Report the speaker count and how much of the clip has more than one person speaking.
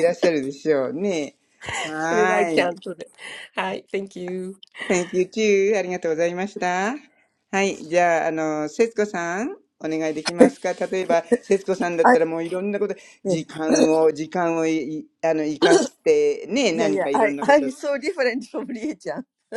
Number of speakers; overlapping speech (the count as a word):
three, about 9%